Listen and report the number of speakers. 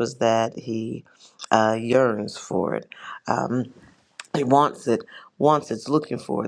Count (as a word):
one